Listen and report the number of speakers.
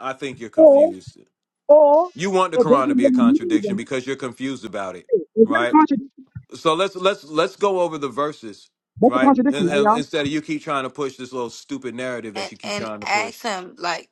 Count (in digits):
3